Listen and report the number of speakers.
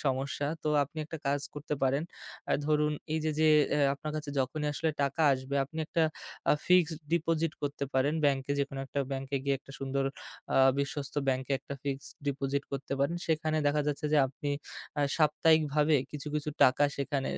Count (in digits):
1